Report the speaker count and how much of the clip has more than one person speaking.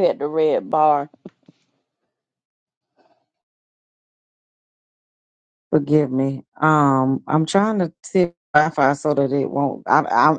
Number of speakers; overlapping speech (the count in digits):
2, no overlap